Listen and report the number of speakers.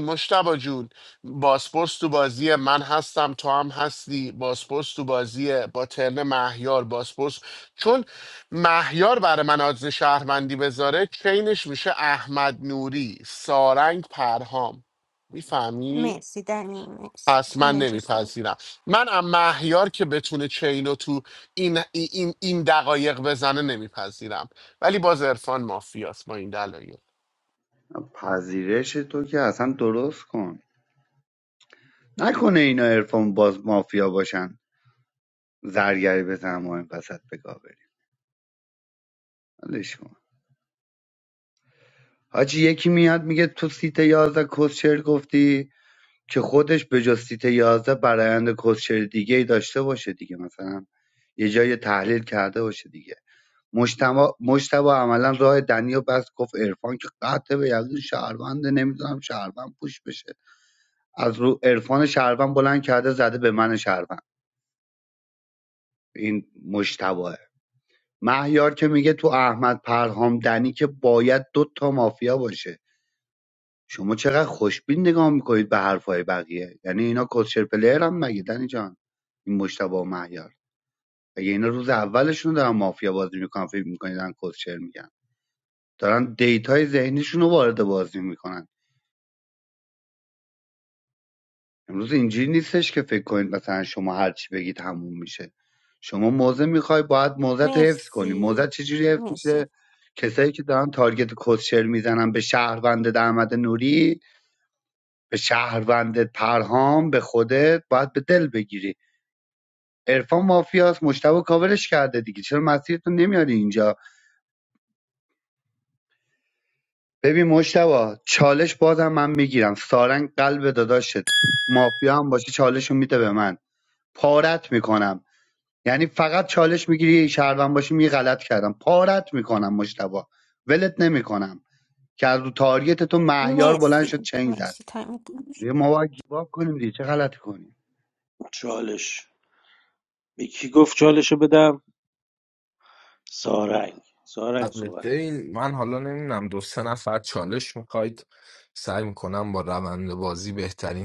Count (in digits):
5